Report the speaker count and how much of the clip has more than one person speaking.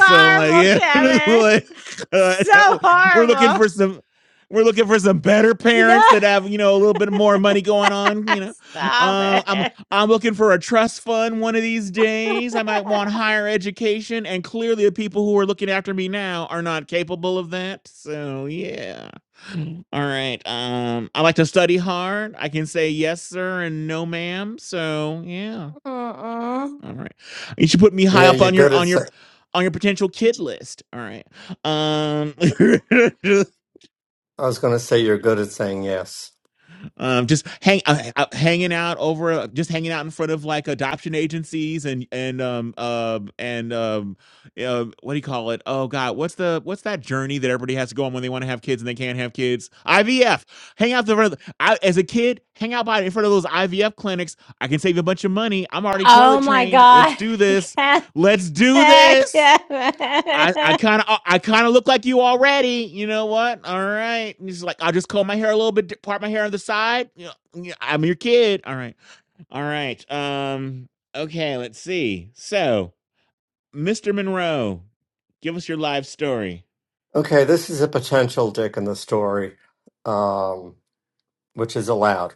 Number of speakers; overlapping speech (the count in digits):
3, about 7%